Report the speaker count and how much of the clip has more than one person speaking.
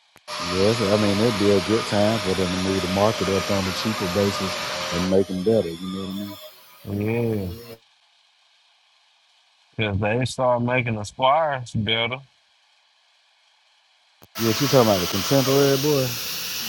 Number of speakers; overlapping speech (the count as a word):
two, no overlap